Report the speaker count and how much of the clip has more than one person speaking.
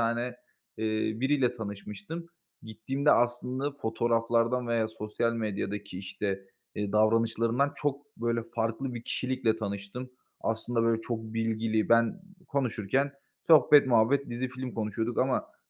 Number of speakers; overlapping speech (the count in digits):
1, no overlap